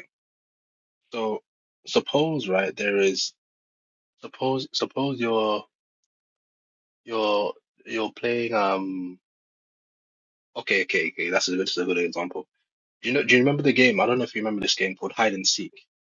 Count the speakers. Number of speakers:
one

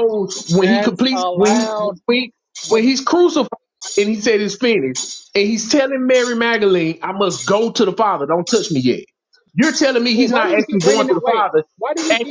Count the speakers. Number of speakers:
two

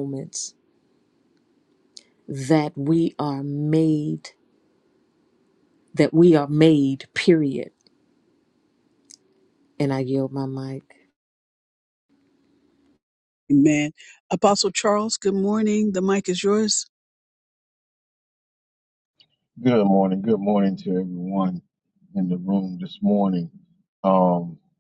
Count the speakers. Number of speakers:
three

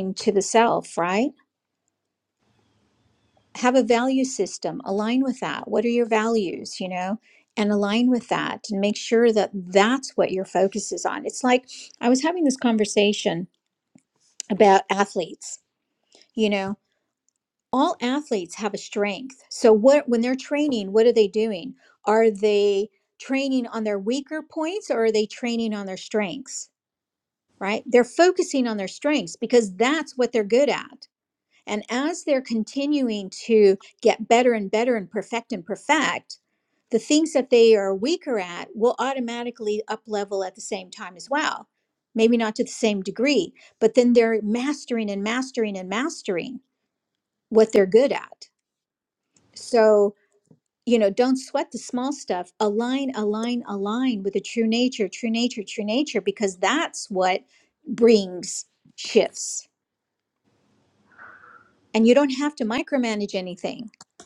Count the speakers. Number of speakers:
one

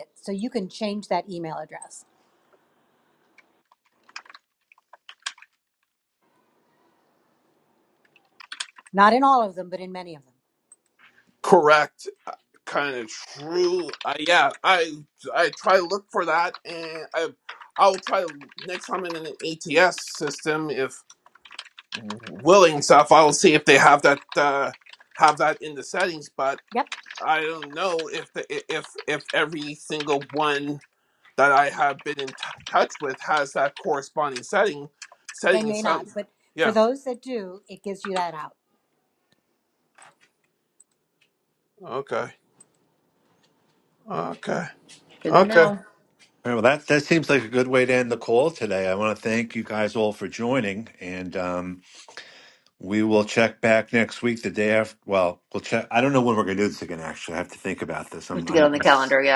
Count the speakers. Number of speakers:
four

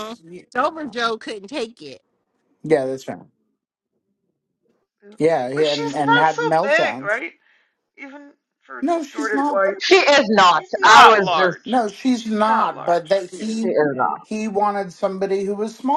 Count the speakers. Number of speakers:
four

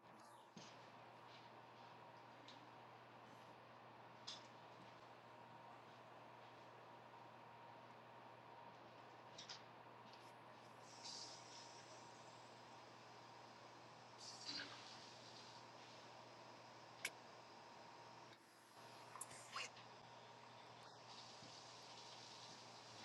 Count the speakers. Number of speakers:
zero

